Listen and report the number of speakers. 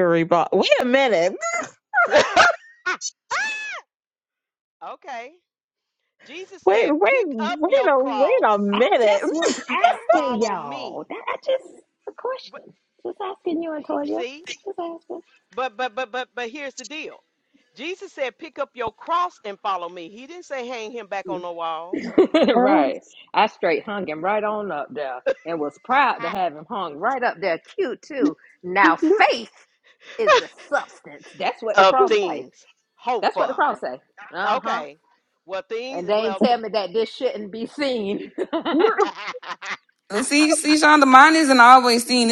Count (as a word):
four